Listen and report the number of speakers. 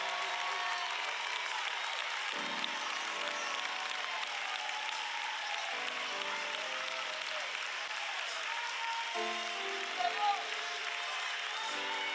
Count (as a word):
zero